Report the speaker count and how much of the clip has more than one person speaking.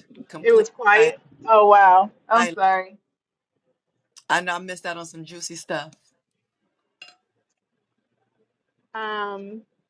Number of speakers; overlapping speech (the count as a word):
two, about 9%